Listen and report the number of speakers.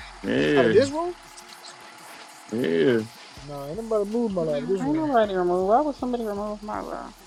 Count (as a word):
three